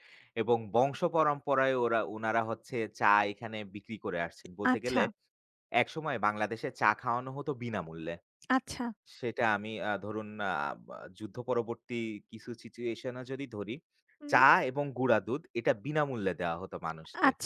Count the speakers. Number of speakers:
2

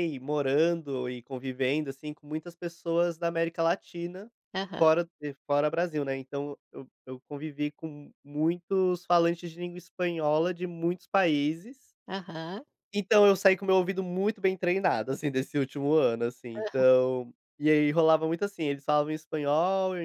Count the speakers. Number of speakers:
2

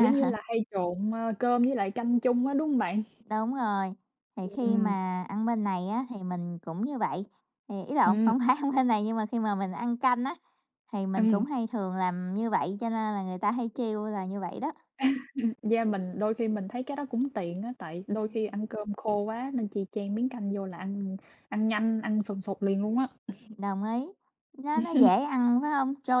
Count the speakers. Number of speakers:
2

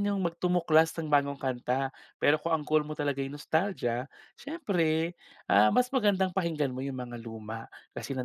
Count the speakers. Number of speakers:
1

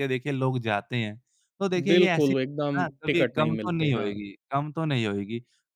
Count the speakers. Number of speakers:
2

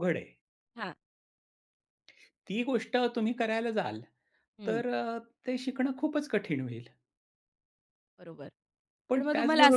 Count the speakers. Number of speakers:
2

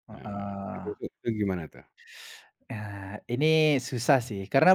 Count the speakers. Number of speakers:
2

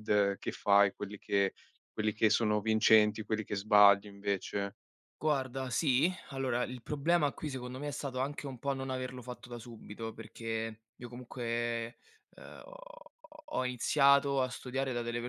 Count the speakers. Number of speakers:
2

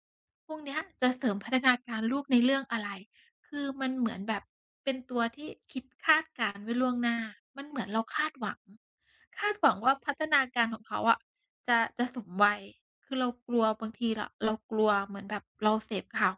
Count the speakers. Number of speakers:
1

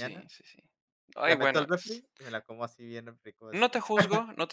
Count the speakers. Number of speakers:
2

